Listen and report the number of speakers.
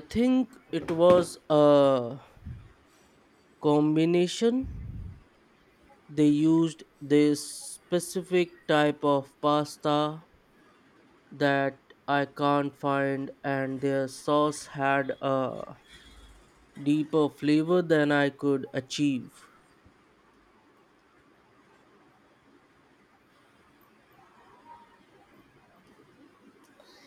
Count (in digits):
1